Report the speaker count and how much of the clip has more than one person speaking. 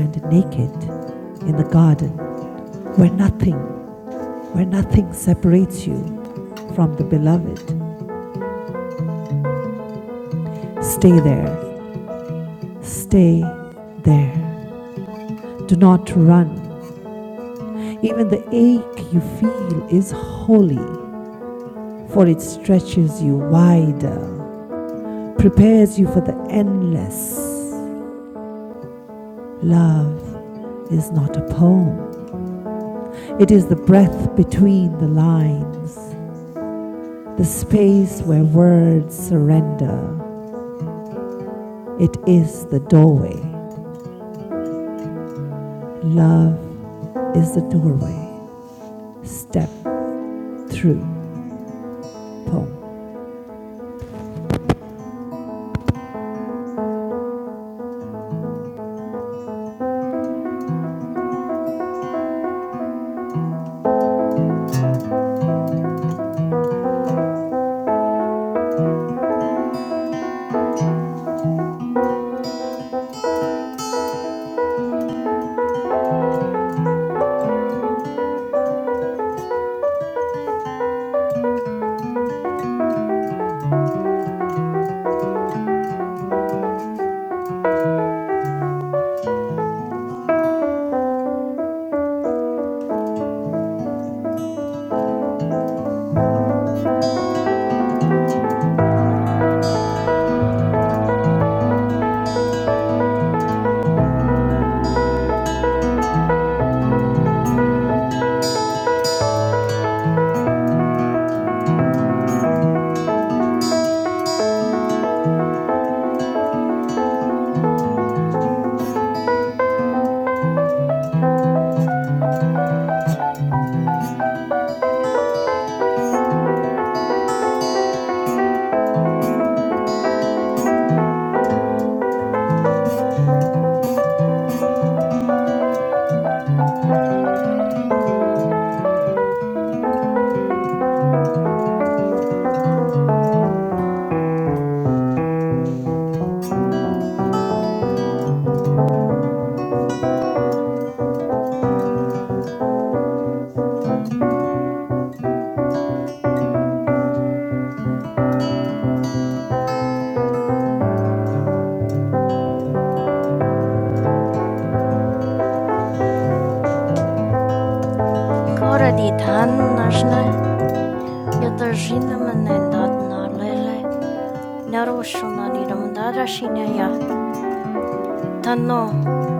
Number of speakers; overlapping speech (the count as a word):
two, no overlap